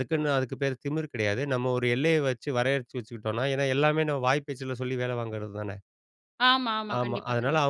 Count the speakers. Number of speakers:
two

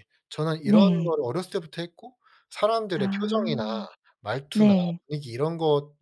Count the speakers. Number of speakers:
two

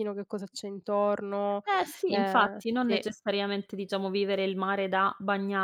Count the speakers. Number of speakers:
two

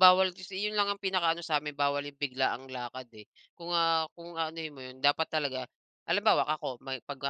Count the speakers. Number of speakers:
one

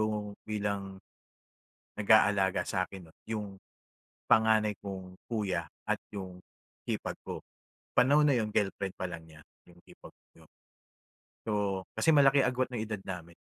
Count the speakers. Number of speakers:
one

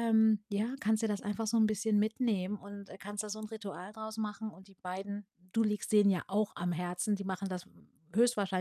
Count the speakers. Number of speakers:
one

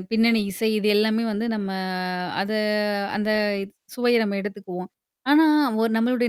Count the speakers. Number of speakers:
one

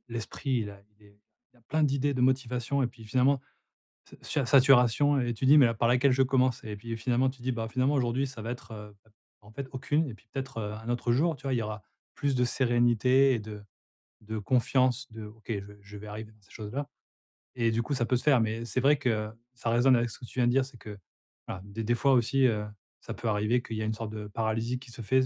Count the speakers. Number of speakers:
one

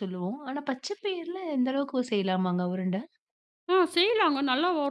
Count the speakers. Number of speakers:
two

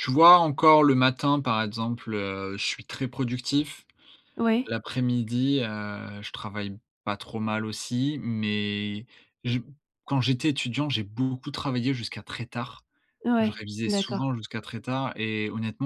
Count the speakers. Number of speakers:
two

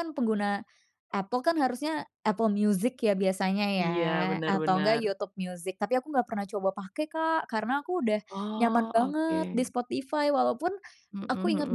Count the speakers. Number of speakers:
two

